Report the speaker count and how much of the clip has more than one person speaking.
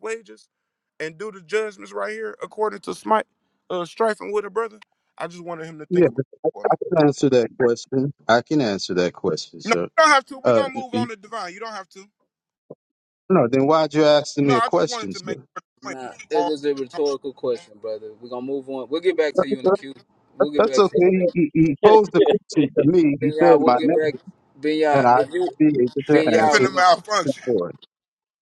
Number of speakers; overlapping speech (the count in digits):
3, about 20%